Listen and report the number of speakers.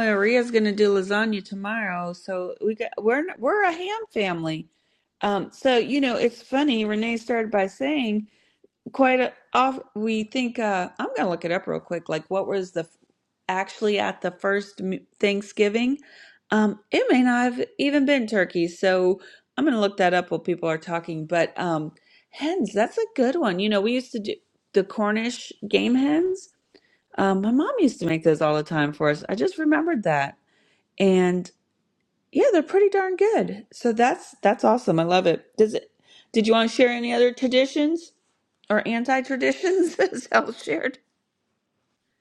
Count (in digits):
1